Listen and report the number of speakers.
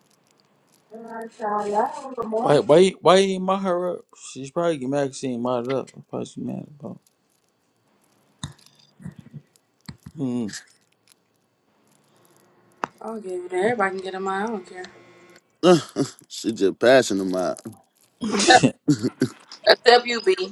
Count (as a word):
three